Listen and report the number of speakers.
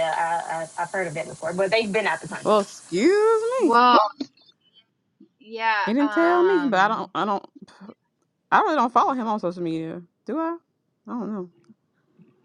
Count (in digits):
3